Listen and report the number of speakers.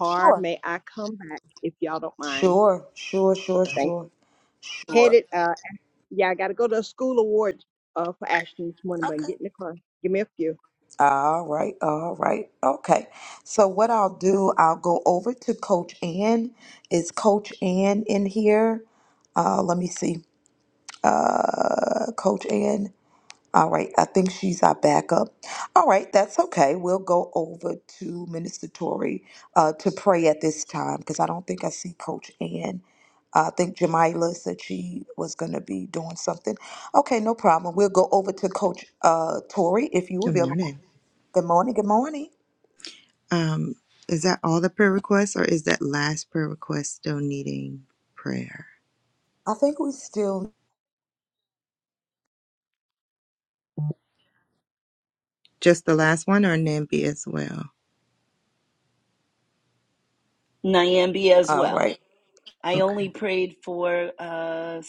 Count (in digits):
4